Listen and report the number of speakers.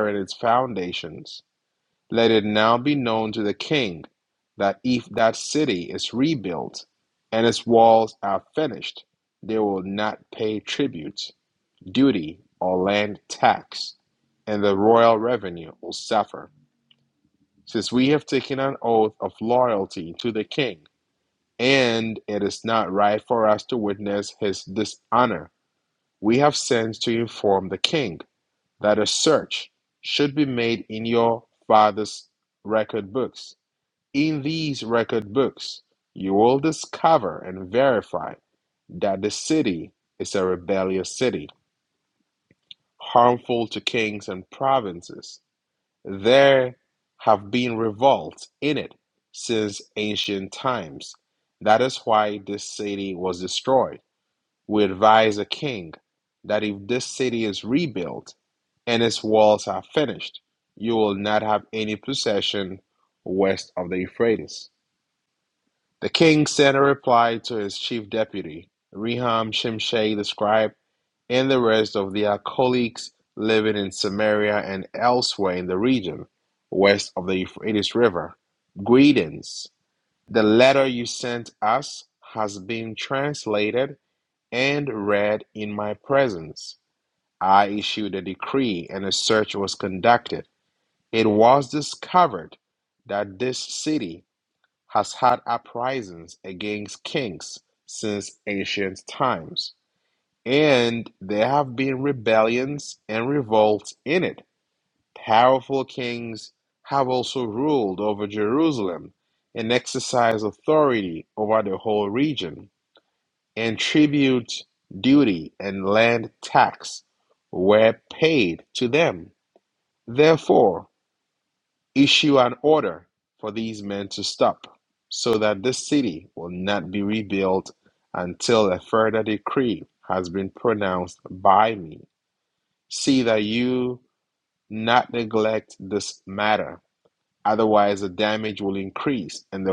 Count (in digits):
1